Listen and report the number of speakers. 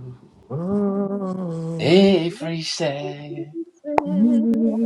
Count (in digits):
3